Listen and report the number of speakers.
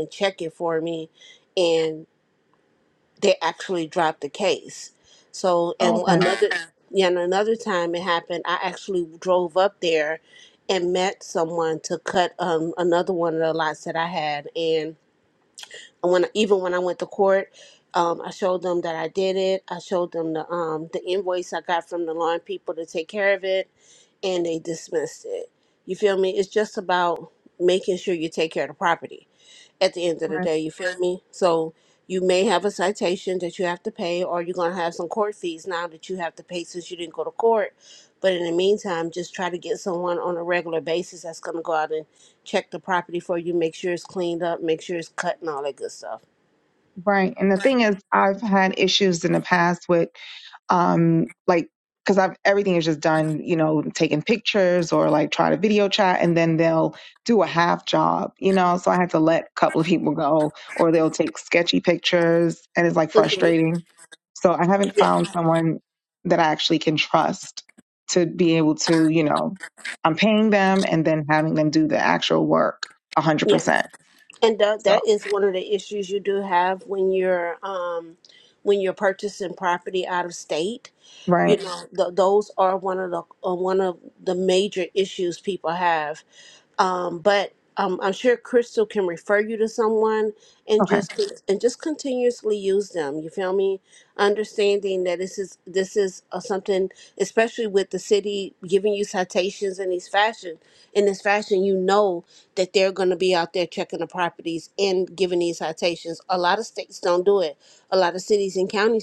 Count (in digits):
2